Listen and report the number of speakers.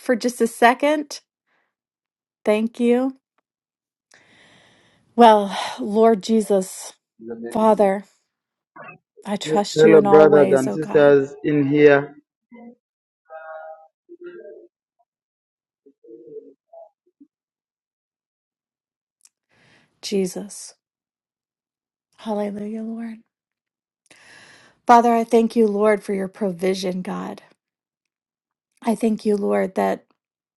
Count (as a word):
two